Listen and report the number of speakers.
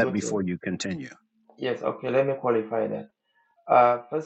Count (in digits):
2